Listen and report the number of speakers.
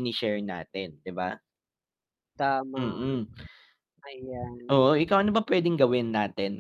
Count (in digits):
2